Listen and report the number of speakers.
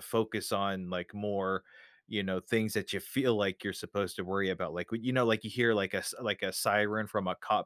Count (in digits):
1